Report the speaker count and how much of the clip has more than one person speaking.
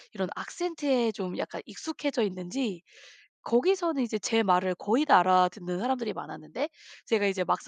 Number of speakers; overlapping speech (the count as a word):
one, no overlap